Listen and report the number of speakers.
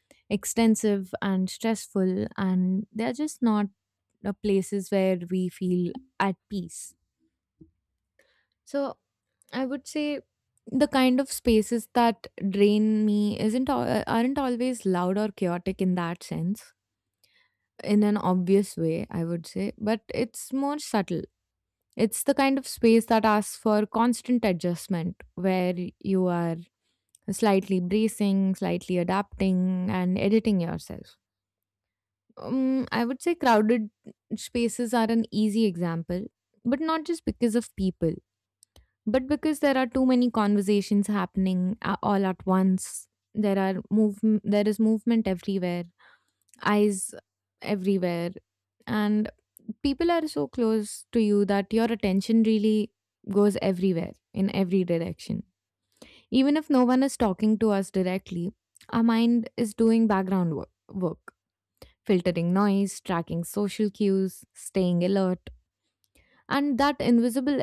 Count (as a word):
one